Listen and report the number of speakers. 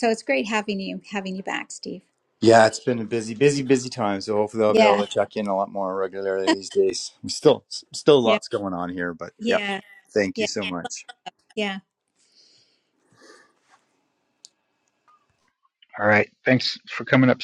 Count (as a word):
three